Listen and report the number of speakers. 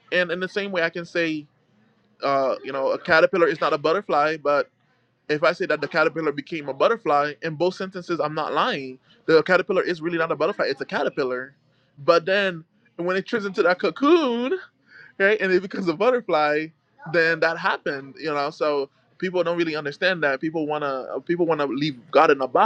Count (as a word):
one